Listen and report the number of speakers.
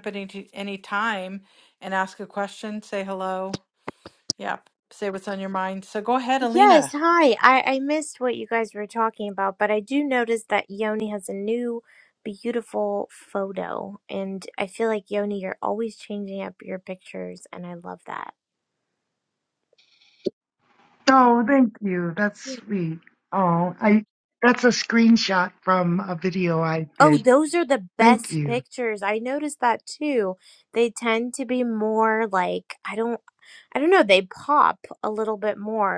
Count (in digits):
3